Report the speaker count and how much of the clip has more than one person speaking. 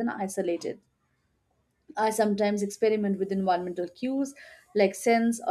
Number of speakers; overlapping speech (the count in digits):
1, no overlap